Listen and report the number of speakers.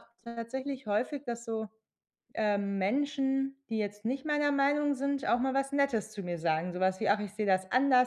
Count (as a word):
one